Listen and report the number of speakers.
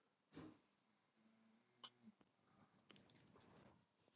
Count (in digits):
0